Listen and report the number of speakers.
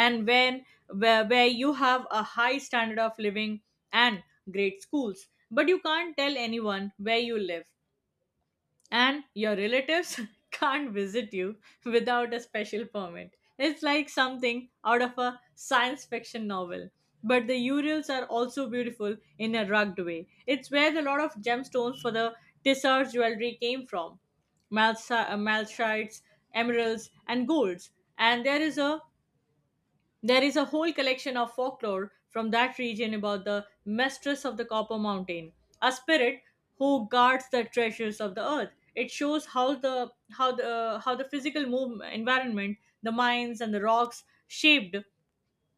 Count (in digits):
1